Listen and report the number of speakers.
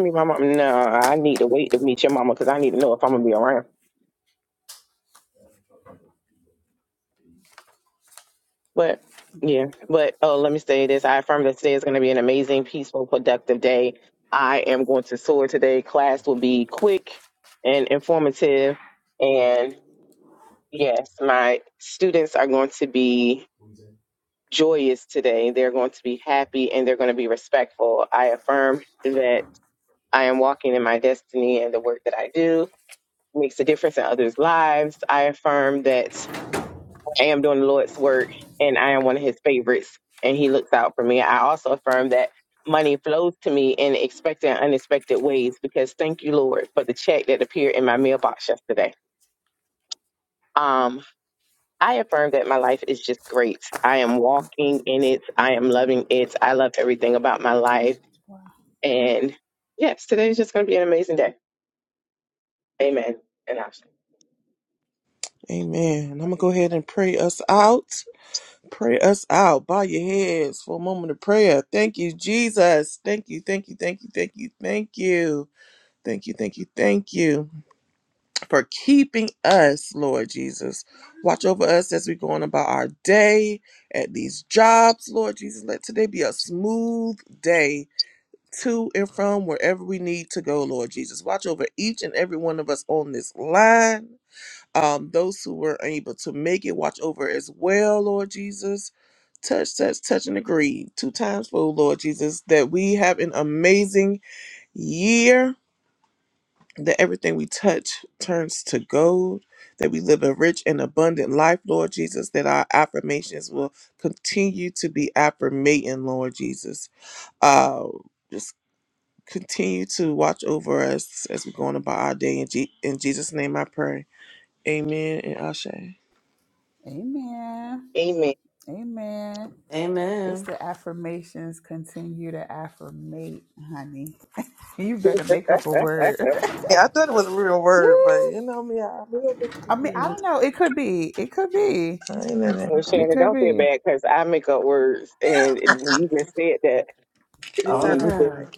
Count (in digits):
4